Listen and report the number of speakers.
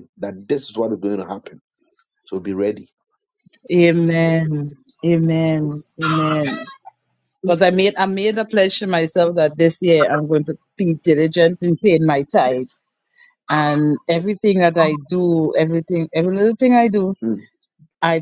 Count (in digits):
2